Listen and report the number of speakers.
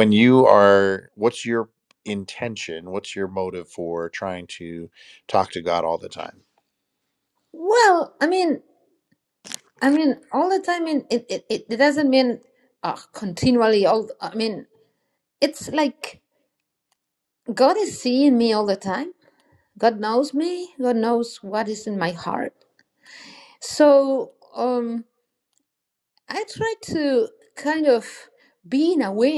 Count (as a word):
two